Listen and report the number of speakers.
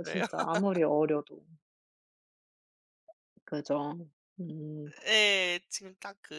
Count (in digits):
2